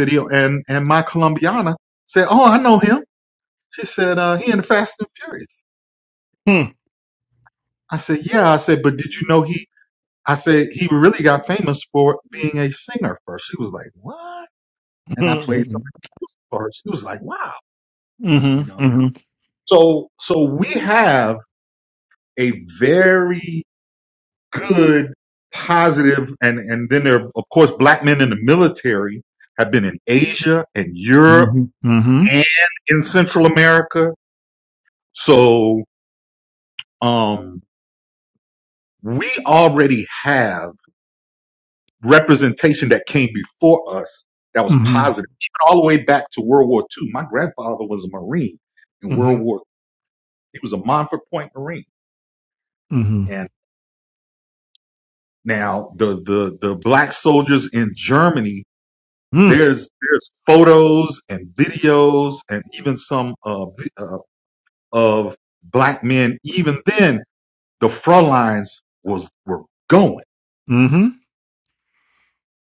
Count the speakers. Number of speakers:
two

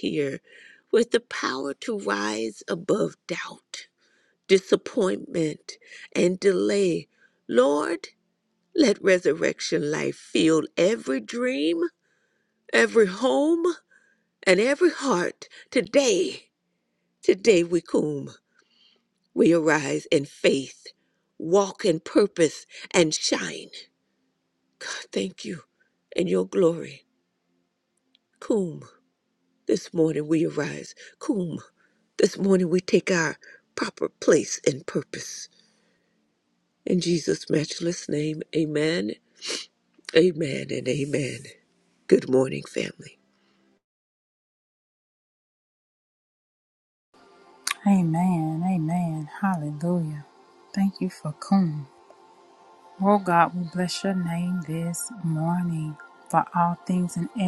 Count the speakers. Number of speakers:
two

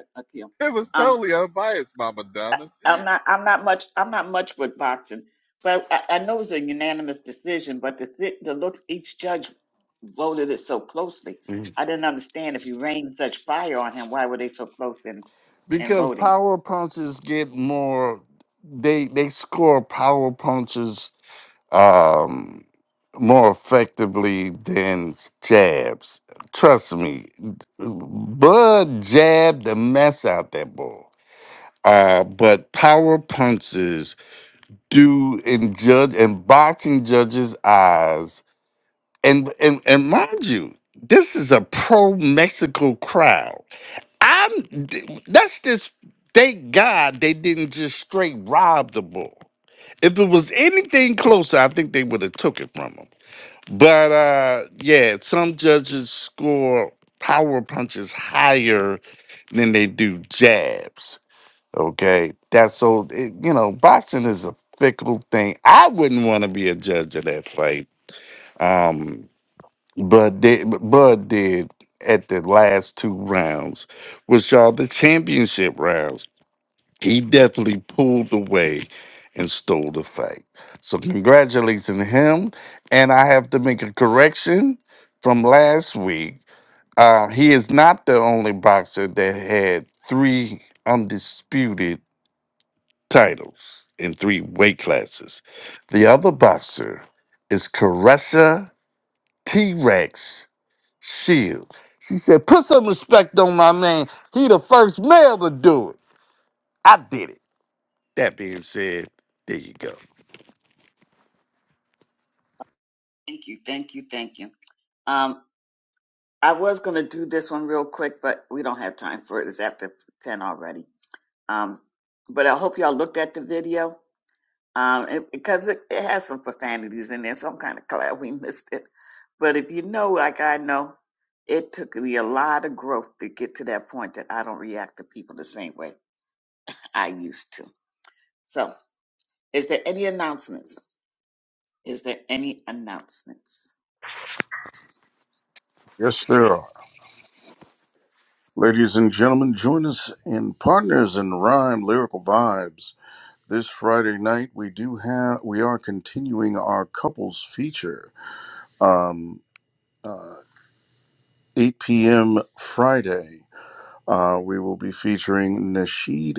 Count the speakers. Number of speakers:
four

